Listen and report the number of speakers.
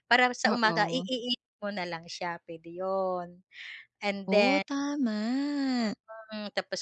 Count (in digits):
2